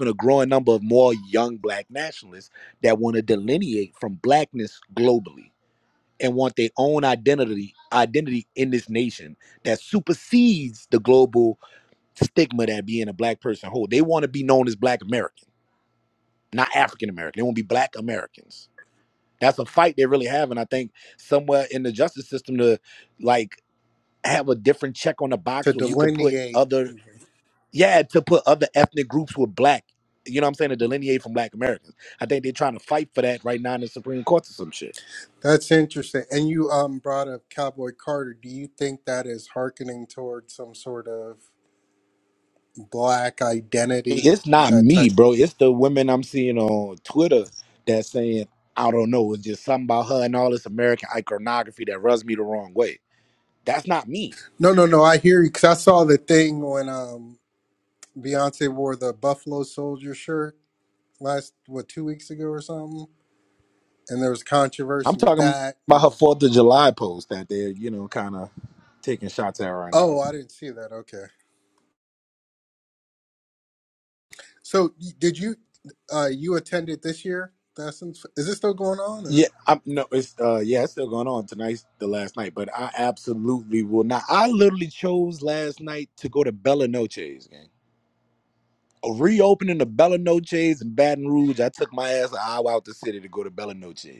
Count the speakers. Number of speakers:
2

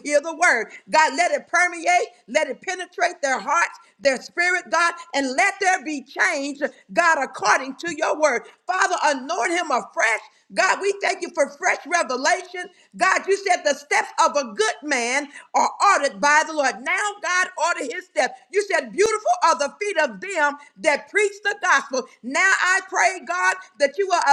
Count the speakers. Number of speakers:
1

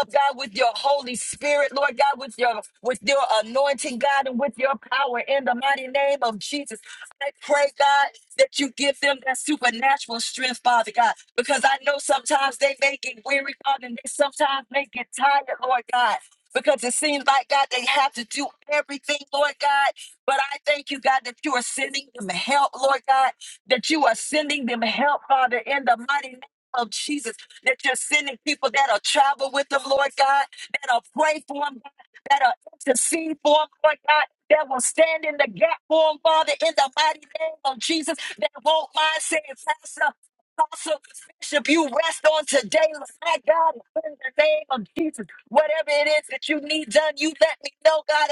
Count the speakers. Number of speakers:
1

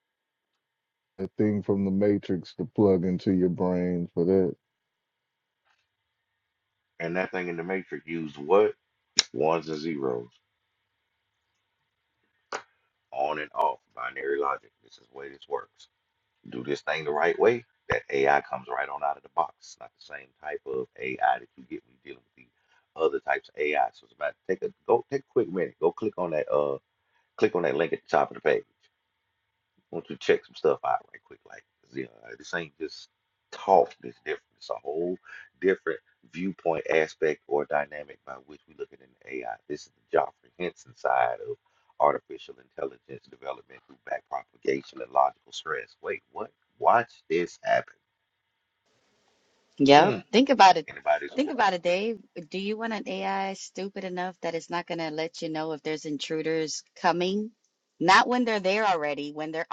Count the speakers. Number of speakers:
3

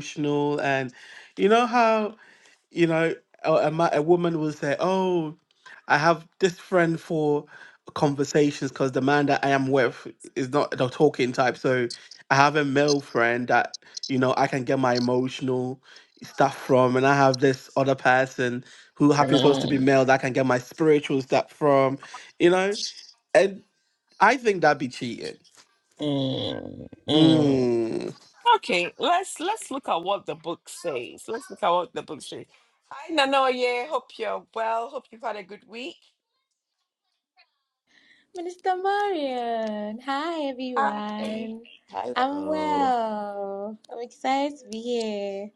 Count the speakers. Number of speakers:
3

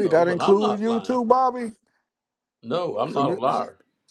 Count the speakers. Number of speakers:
2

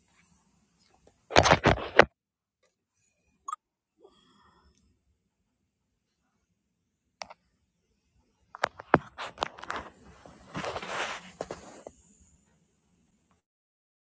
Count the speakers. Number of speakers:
0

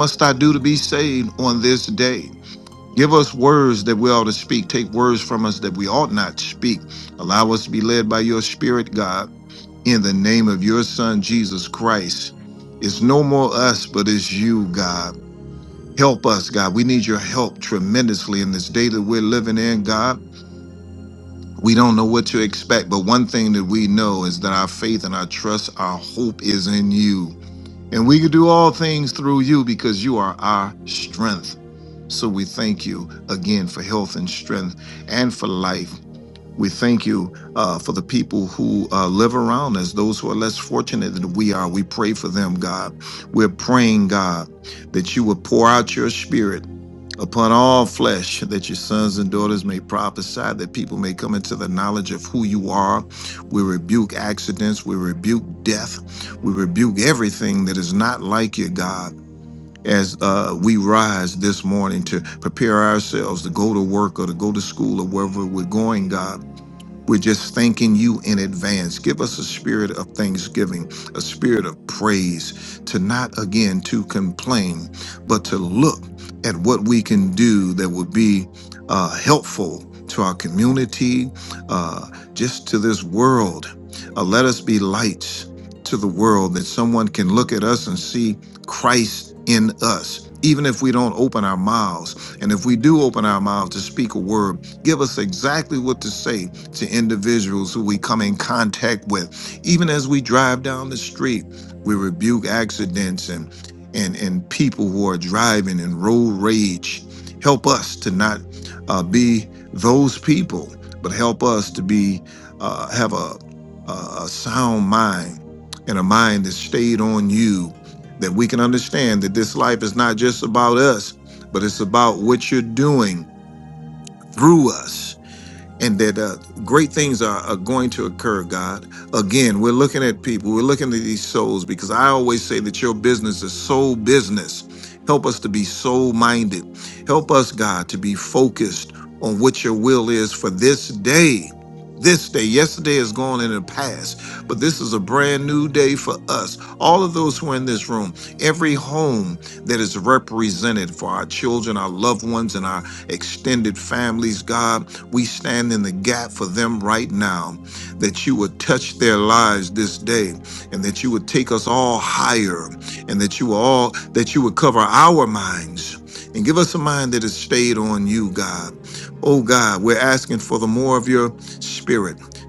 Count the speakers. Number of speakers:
1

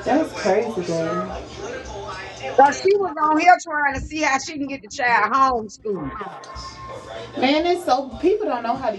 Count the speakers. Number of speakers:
2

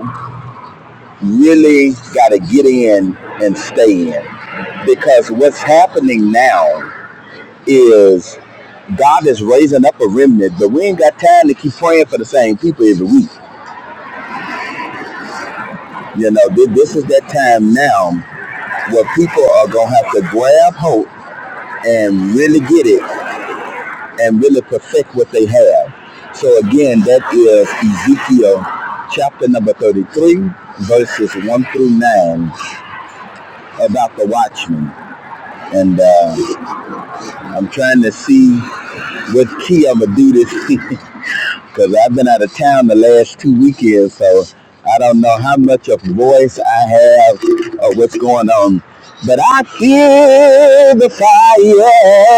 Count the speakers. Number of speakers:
1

